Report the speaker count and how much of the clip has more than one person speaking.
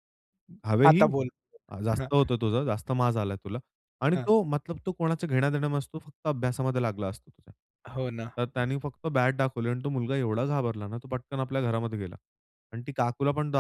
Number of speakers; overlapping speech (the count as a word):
two, about 4%